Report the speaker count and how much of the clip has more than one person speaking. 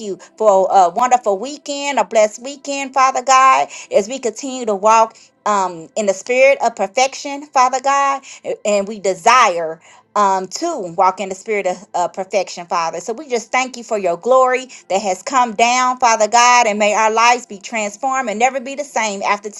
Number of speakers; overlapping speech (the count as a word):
one, no overlap